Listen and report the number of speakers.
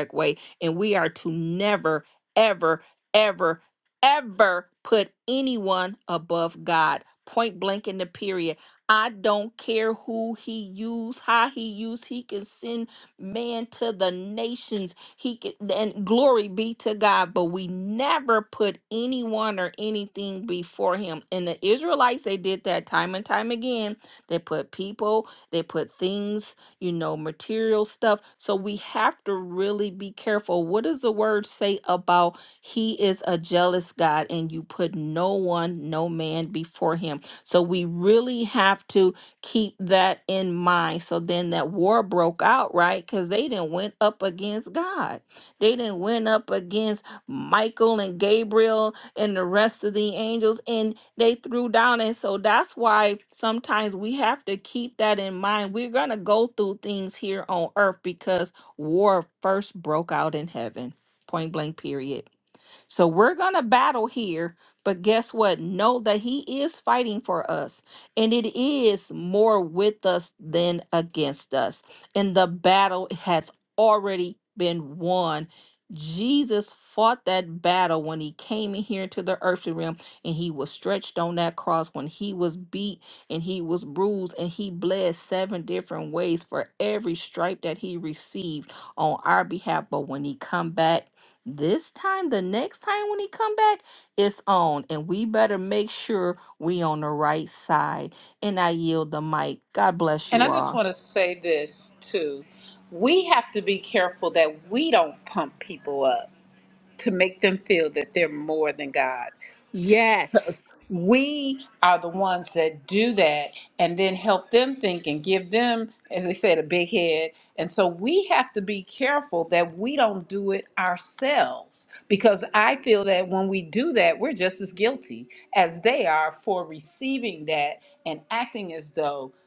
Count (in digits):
2